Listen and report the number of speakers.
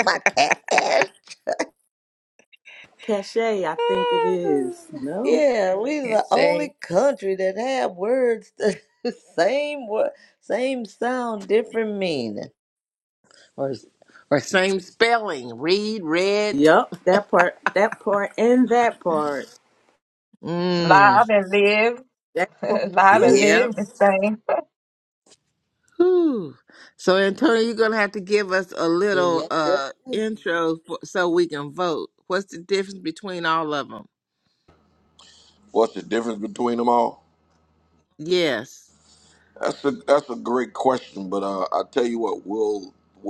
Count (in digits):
5